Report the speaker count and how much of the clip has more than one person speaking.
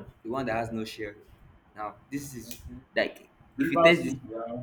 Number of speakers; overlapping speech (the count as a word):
two, about 13%